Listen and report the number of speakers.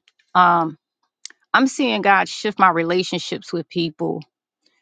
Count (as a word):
one